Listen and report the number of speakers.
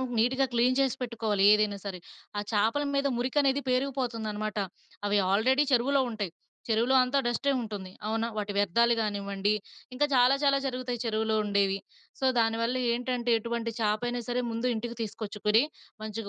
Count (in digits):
1